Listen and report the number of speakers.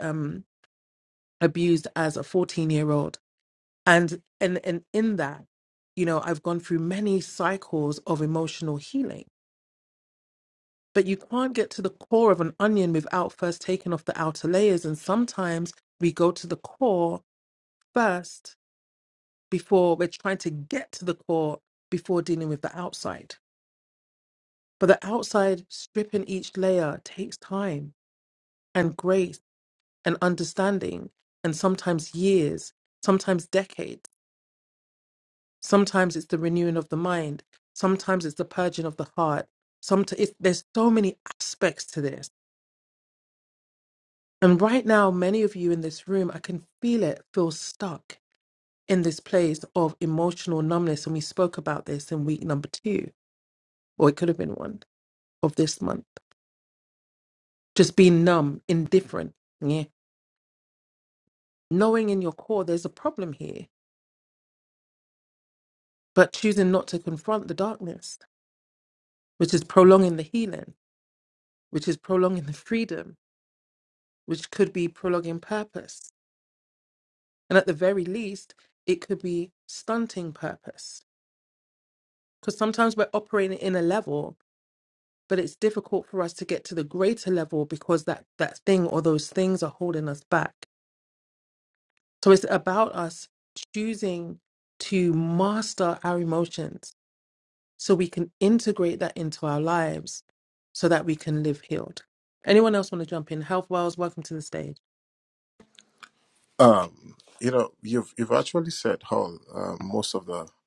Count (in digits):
2